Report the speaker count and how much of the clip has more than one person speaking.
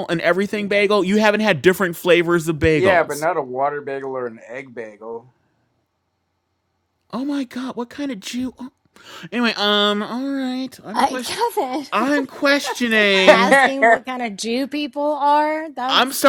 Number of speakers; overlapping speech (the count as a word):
three, about 11%